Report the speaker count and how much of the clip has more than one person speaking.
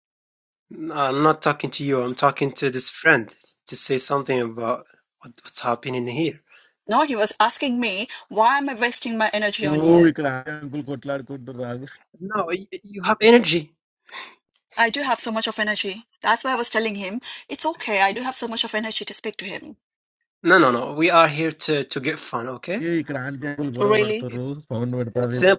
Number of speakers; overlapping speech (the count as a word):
three, about 3%